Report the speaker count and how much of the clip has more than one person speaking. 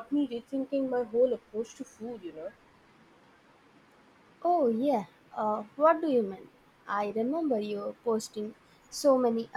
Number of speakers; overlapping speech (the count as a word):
two, no overlap